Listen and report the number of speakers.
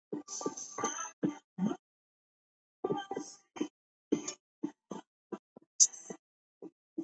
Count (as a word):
zero